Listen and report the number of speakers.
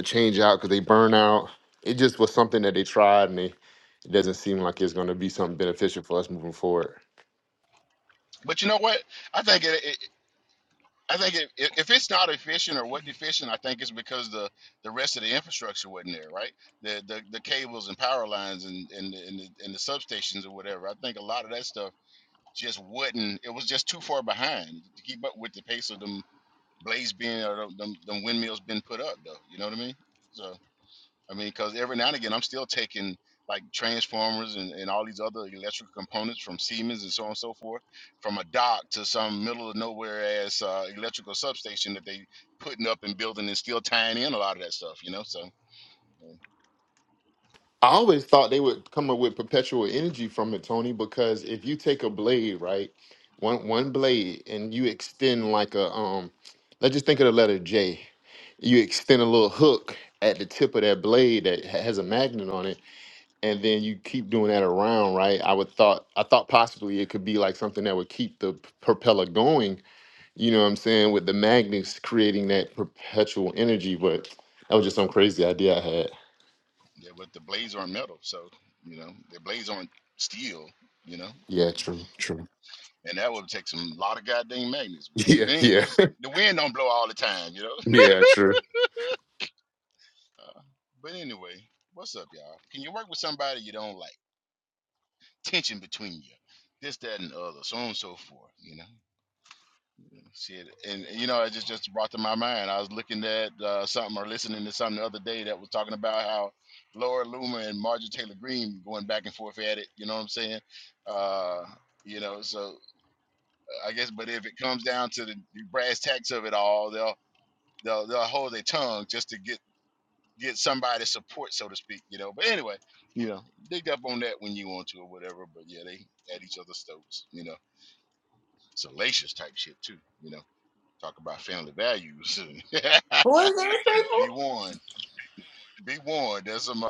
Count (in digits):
3